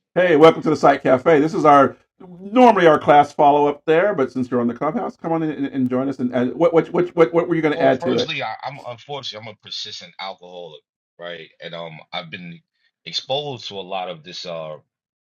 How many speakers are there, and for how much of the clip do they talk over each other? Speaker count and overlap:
2, about 4%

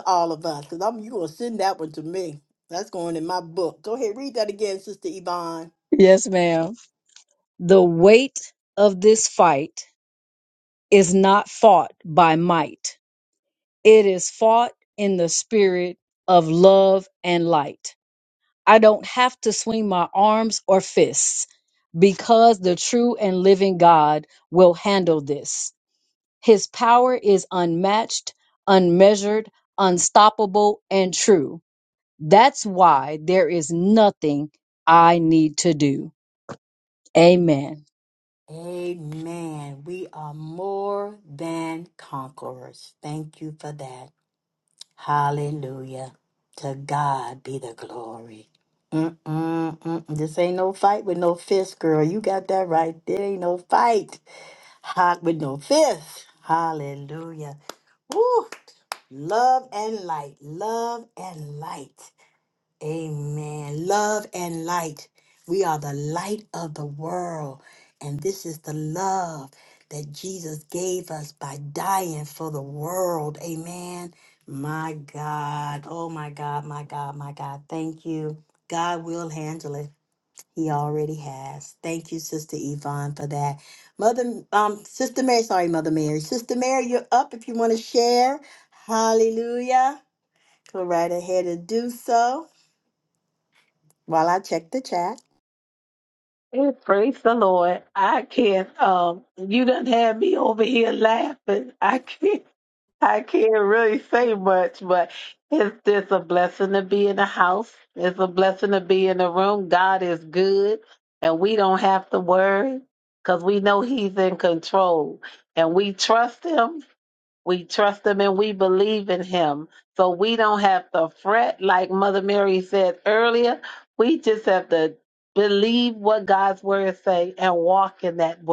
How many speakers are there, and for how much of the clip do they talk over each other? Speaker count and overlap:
3, no overlap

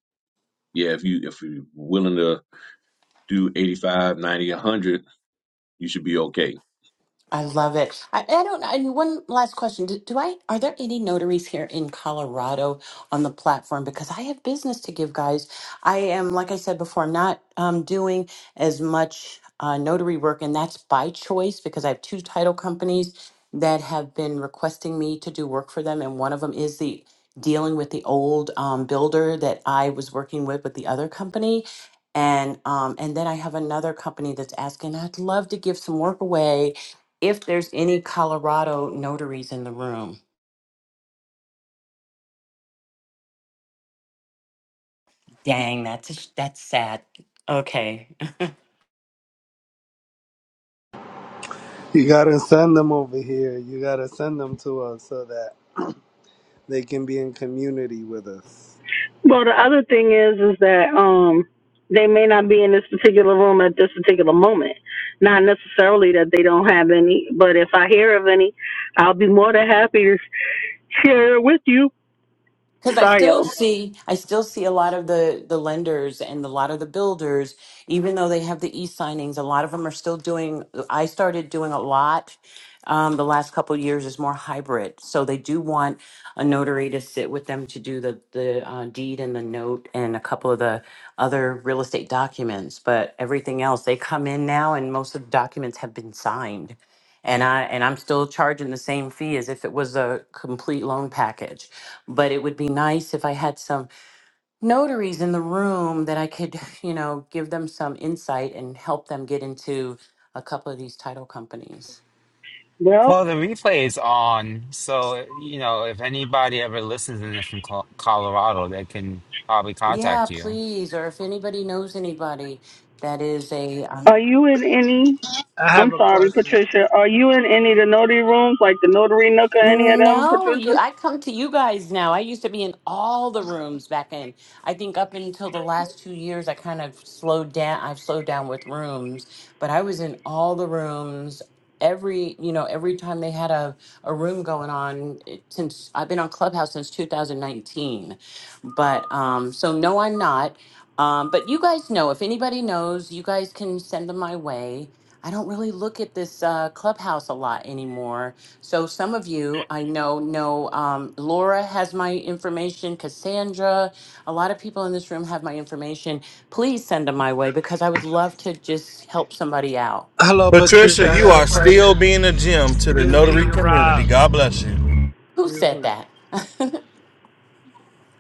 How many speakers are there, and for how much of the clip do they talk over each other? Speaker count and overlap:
6, about 4%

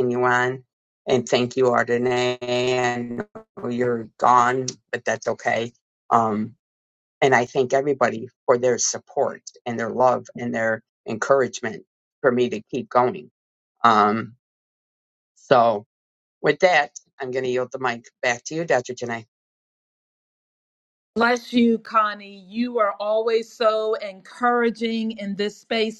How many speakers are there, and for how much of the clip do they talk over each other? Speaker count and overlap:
2, no overlap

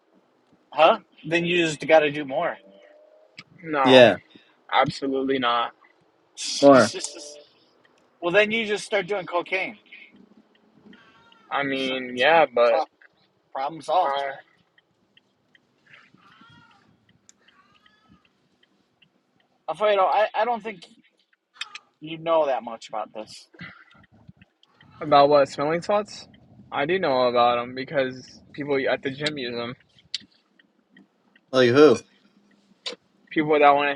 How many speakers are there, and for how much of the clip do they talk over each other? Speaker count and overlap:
3, about 1%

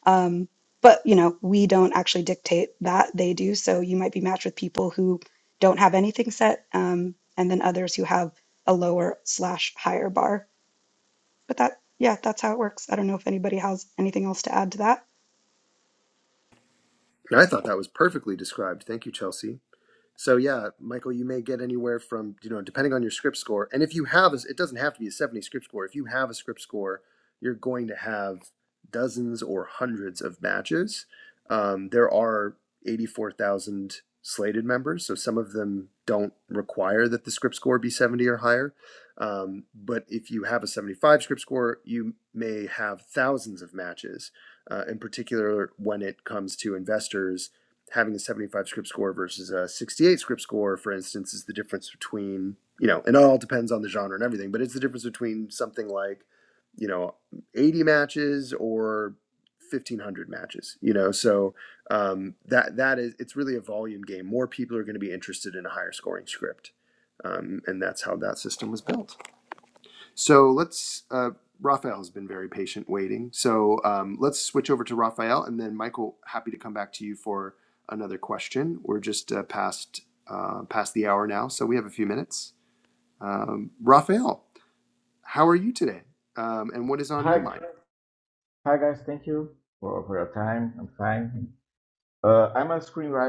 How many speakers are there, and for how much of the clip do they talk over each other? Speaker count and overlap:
3, under 1%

